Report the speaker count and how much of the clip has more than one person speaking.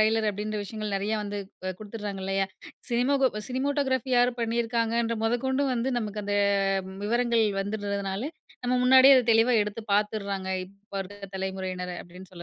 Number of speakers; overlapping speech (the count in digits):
1, no overlap